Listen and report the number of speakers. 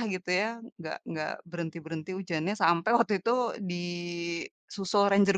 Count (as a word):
one